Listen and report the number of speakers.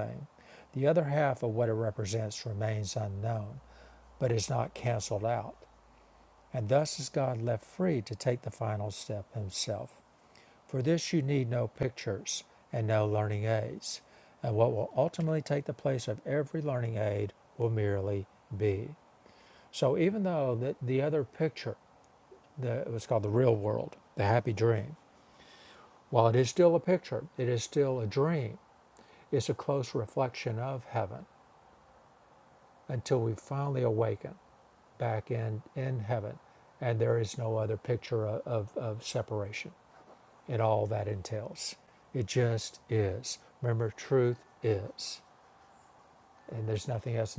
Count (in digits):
1